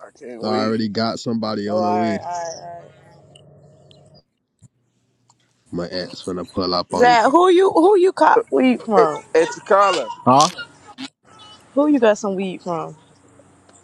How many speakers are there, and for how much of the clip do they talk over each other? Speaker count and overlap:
4, about 11%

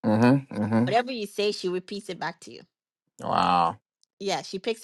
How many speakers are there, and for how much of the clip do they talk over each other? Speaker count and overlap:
2, under 1%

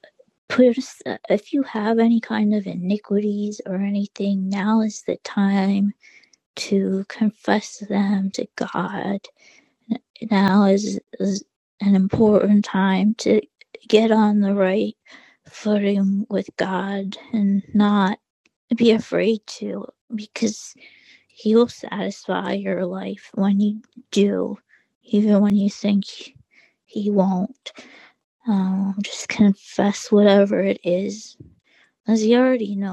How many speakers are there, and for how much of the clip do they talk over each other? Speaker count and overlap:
1, no overlap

